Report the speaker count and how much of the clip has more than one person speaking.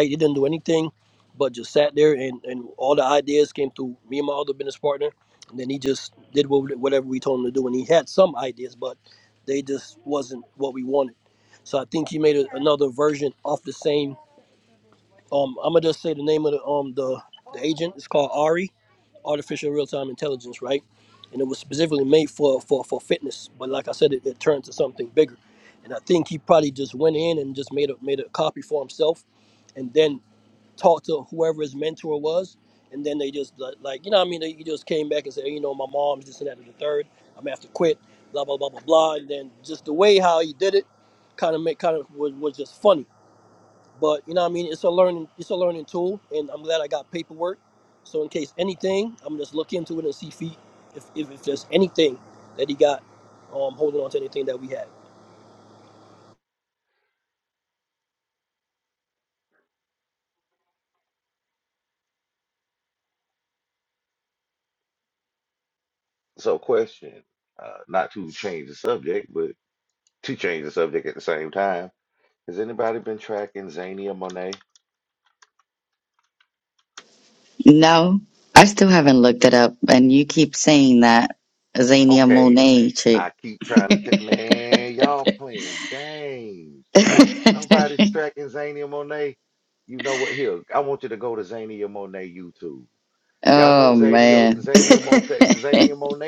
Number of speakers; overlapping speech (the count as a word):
three, about 2%